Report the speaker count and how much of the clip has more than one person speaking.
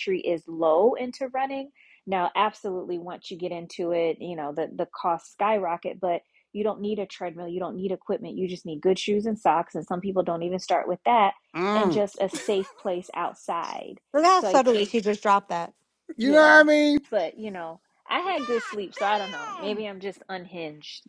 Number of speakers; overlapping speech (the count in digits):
3, about 7%